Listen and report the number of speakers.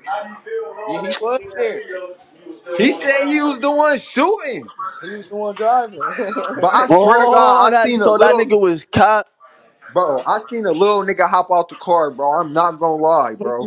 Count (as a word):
three